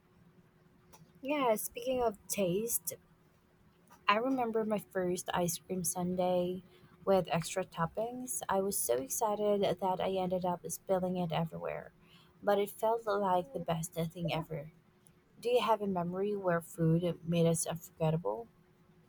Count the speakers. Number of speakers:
1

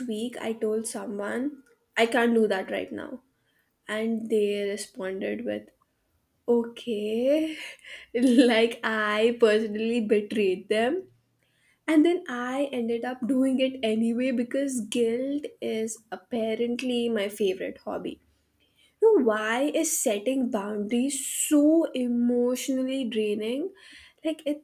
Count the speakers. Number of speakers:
1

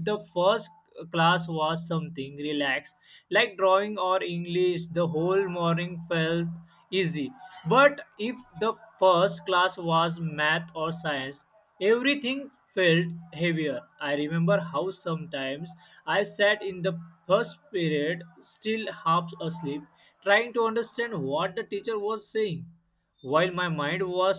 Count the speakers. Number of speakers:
1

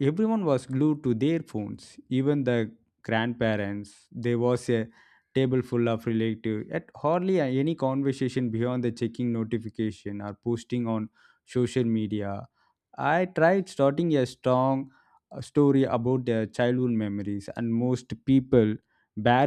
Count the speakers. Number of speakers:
1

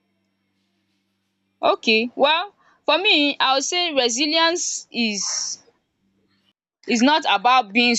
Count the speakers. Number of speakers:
1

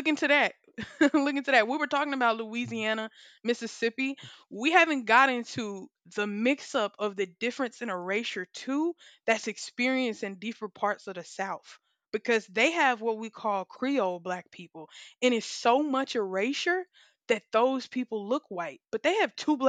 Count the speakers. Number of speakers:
1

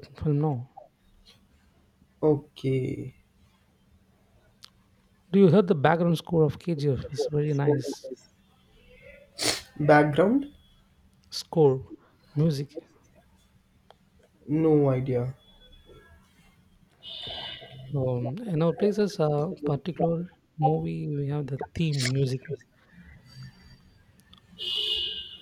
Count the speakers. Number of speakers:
2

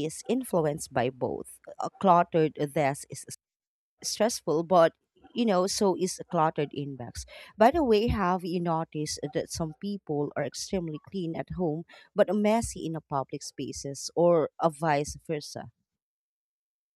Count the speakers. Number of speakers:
1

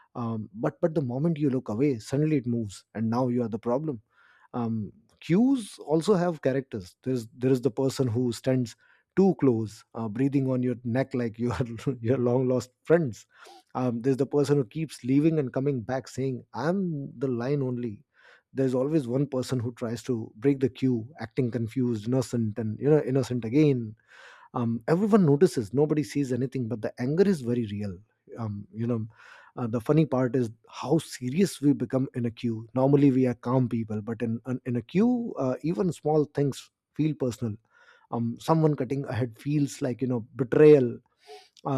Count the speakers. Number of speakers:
1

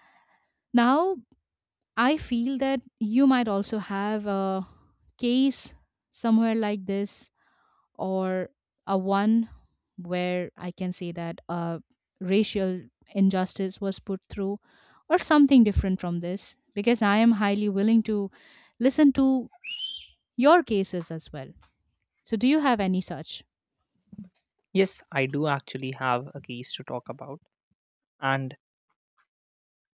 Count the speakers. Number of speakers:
2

